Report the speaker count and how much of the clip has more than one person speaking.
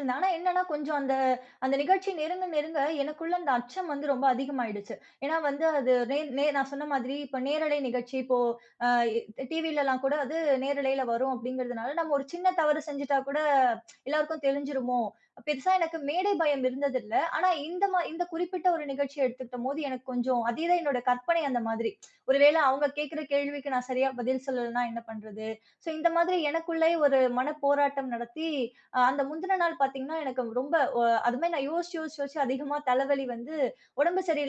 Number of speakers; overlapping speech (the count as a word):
one, no overlap